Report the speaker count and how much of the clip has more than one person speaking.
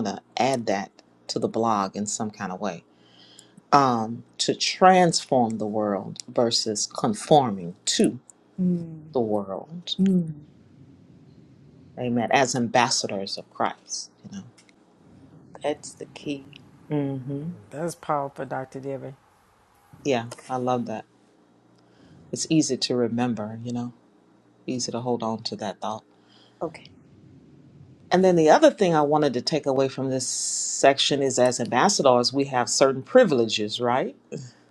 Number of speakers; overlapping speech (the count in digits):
3, no overlap